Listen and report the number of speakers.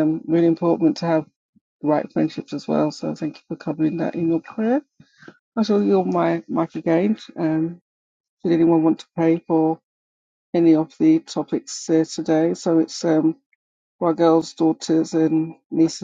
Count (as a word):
one